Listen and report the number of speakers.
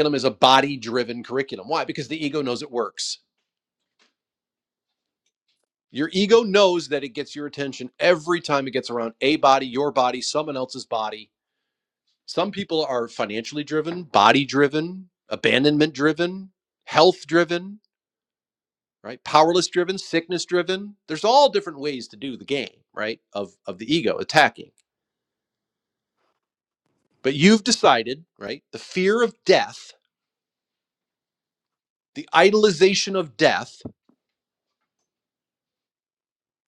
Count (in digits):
1